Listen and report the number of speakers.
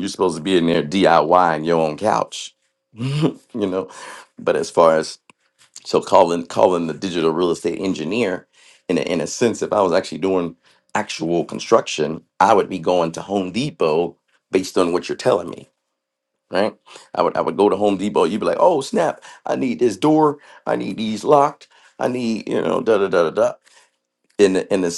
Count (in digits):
1